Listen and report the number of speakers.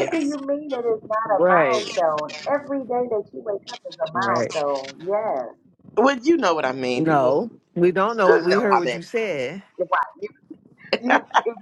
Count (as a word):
three